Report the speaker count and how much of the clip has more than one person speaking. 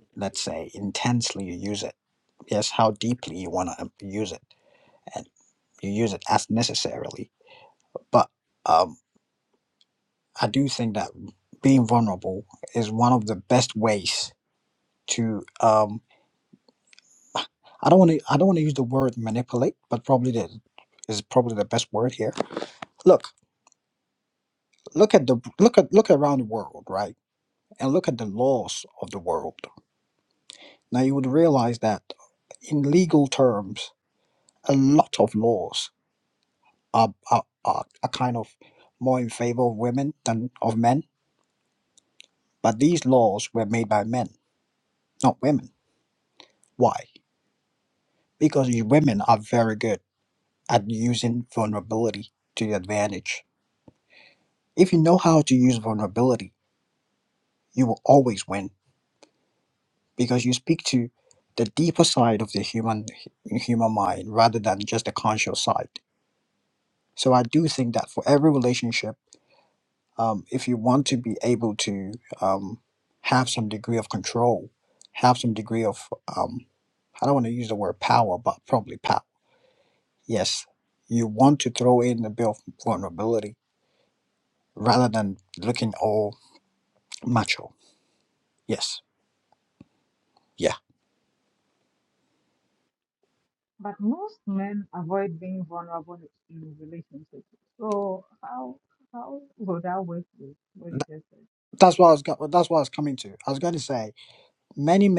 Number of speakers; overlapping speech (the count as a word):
two, no overlap